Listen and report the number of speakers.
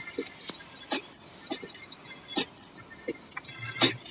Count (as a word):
zero